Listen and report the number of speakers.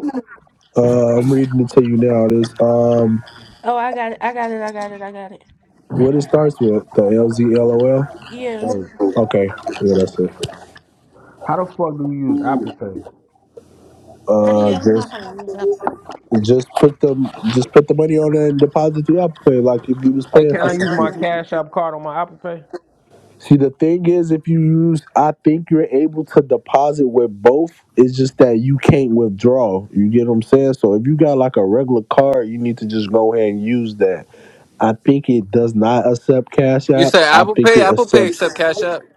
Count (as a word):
five